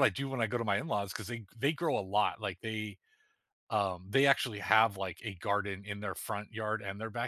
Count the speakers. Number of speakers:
one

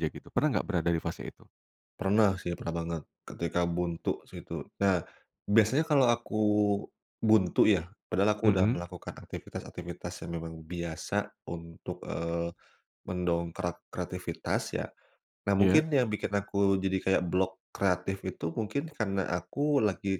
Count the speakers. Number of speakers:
two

